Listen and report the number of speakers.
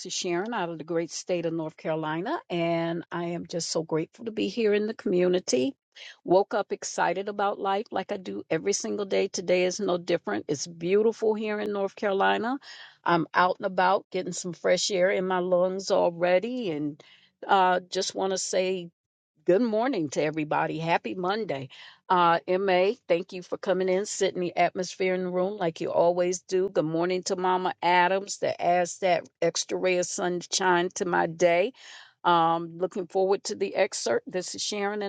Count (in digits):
1